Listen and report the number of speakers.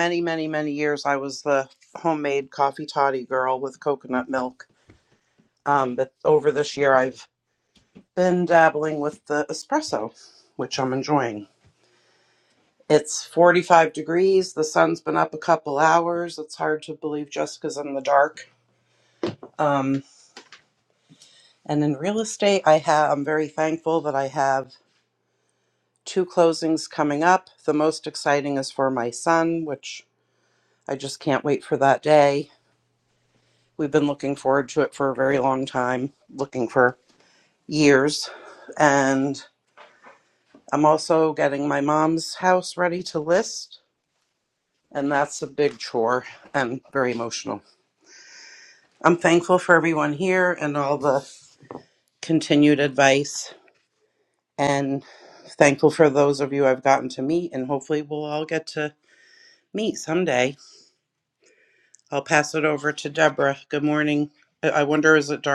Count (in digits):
1